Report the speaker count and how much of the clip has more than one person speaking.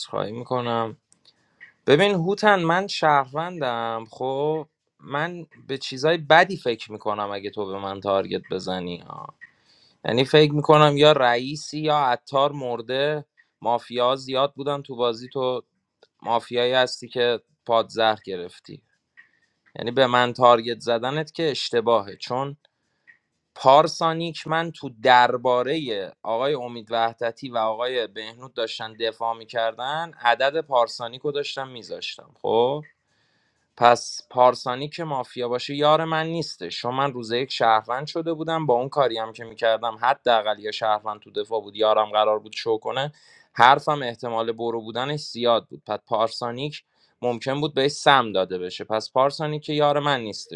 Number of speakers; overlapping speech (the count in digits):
1, no overlap